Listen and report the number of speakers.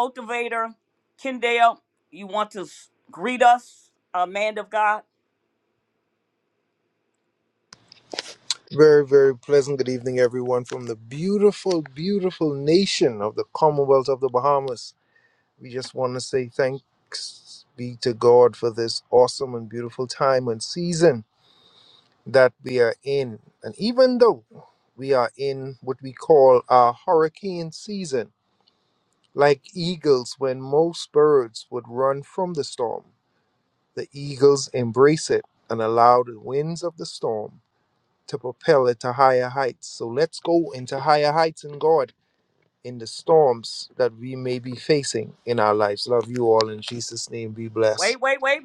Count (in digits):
2